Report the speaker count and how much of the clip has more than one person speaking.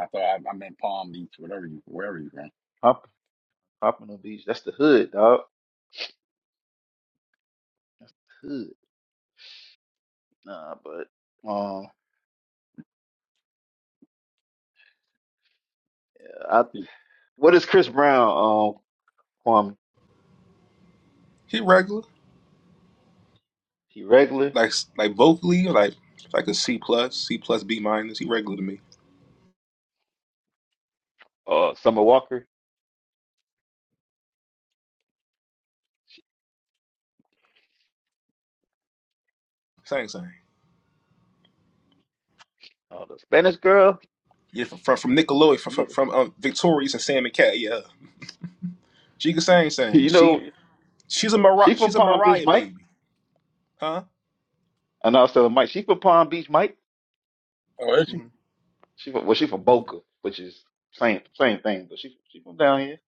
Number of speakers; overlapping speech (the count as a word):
three, about 3%